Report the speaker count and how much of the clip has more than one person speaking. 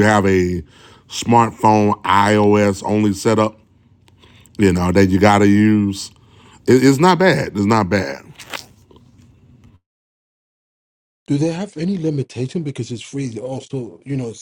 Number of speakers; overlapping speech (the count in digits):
2, no overlap